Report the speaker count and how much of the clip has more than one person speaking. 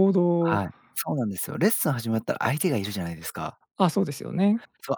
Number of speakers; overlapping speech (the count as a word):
two, about 4%